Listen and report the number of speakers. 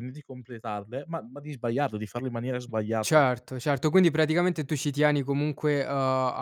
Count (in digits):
2